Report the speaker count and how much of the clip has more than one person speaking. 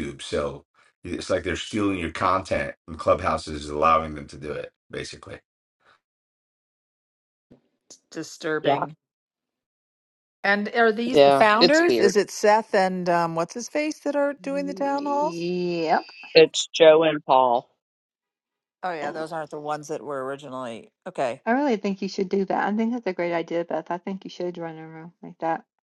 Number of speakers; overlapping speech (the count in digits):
4, about 8%